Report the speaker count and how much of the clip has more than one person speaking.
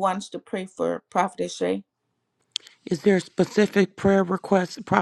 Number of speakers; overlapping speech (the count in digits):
2, no overlap